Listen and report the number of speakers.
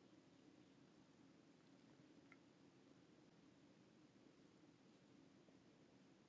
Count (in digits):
0